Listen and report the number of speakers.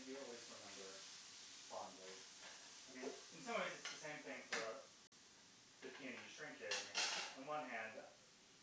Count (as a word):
one